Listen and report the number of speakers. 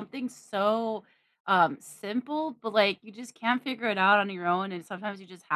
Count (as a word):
one